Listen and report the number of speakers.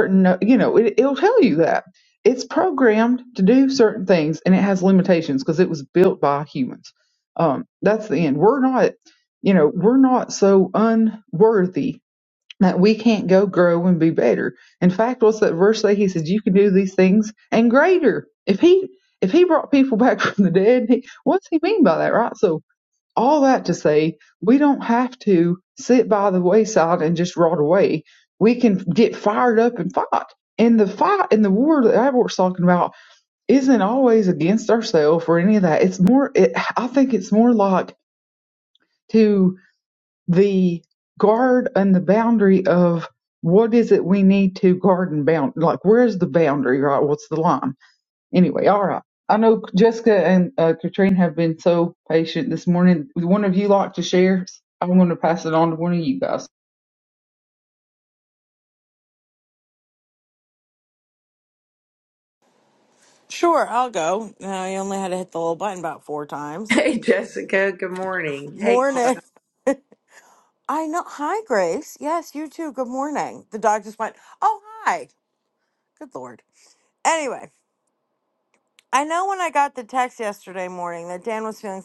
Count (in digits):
3